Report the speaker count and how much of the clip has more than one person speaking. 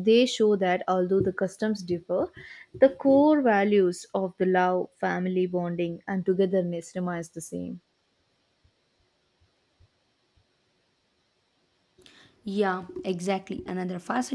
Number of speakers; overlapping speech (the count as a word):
two, no overlap